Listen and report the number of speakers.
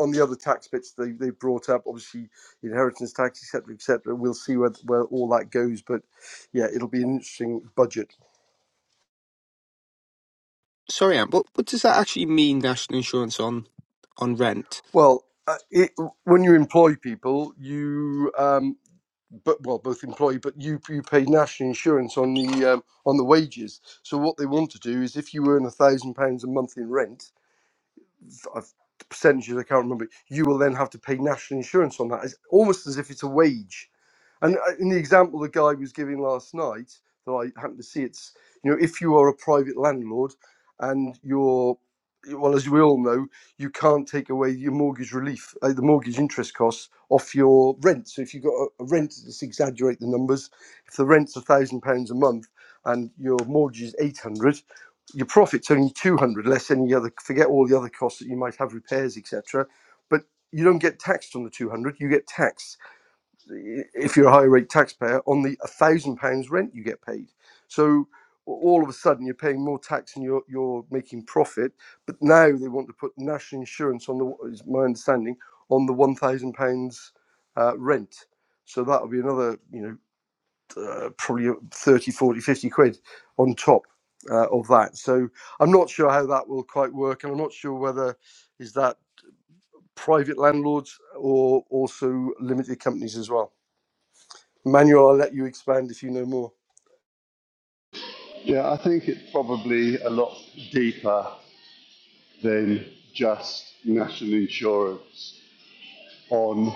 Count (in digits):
3